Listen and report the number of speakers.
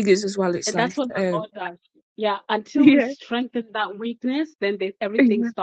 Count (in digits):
2